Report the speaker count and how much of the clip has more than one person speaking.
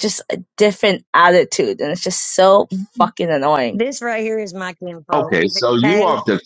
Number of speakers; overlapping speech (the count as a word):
three, about 9%